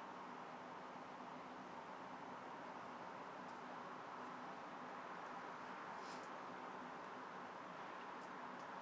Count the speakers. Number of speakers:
0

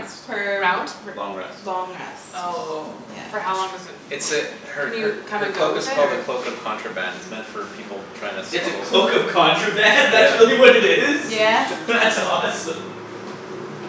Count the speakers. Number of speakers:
4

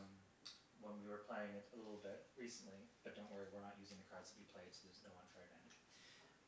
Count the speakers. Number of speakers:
1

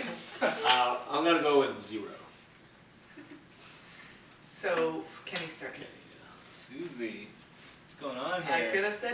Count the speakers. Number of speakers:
3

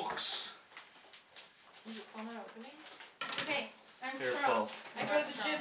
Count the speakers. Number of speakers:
3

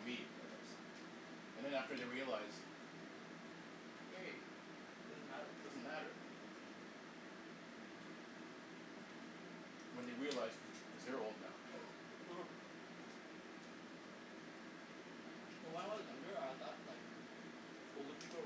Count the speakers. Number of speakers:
2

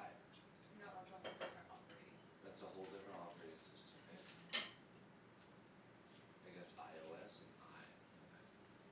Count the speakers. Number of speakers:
2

